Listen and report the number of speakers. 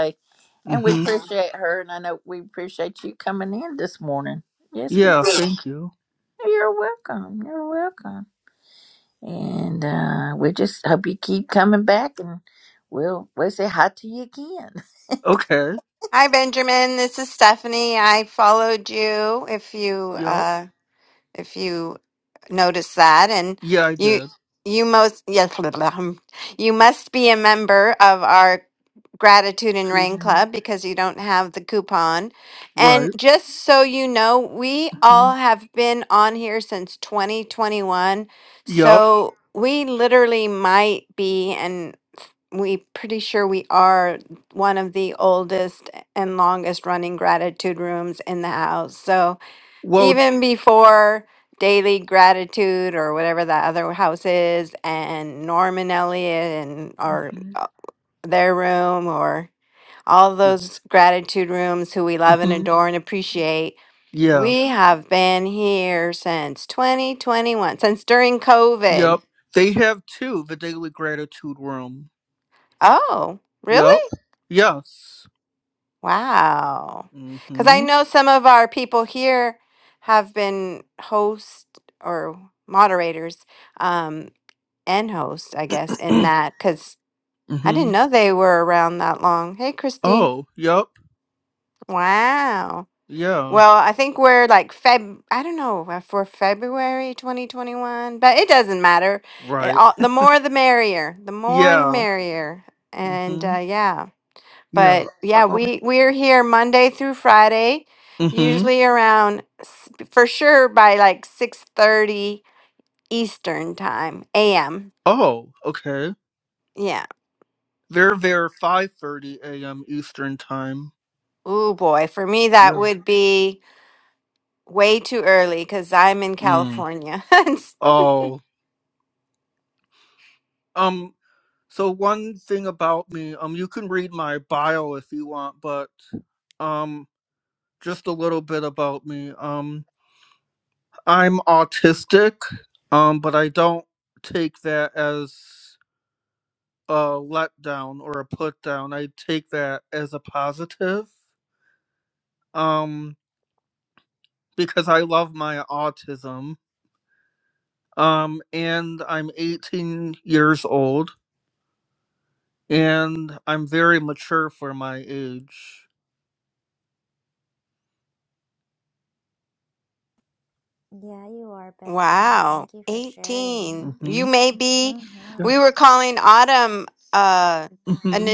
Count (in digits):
4